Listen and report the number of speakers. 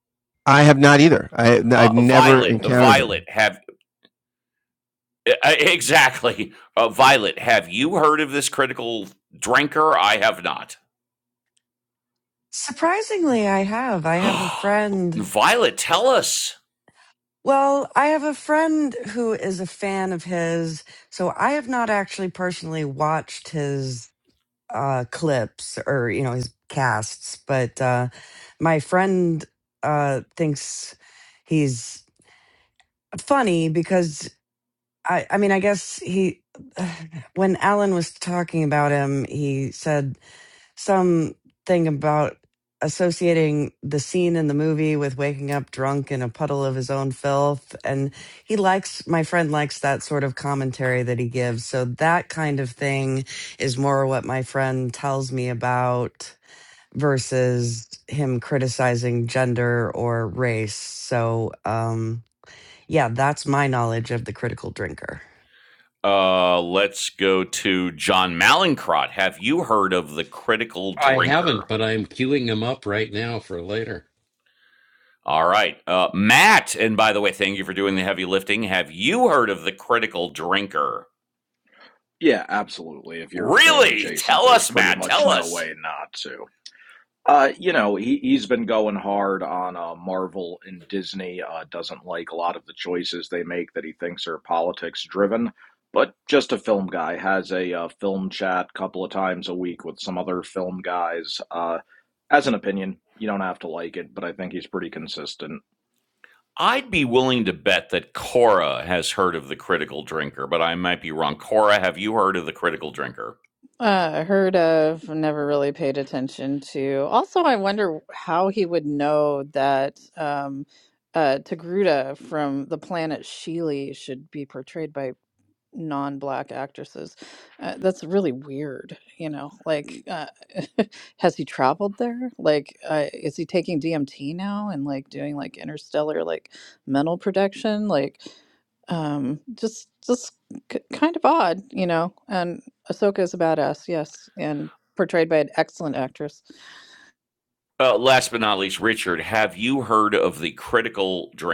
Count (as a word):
six